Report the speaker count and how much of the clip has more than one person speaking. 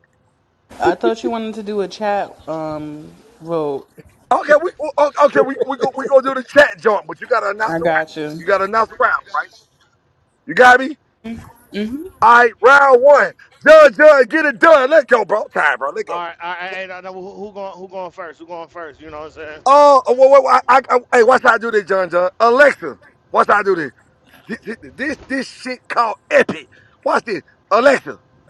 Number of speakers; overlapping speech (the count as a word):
three, about 2%